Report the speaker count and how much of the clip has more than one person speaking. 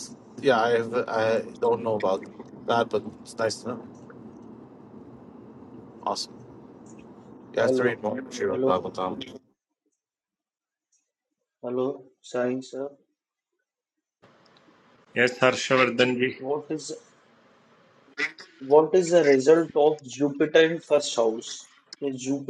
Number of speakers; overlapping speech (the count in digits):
3, about 4%